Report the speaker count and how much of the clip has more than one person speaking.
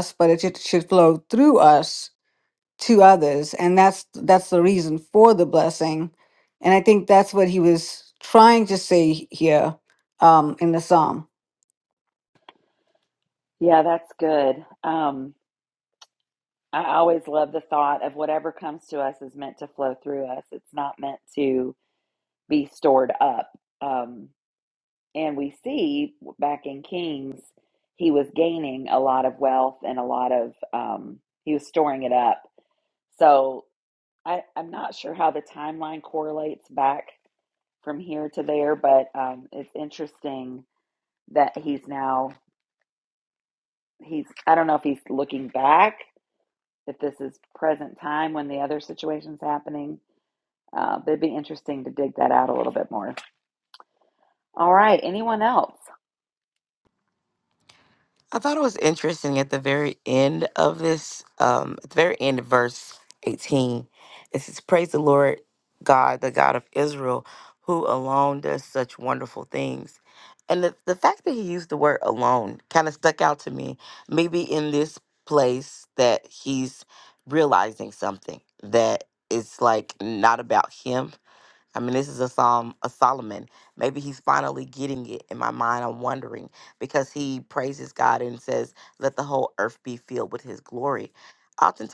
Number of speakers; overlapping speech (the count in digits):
3, no overlap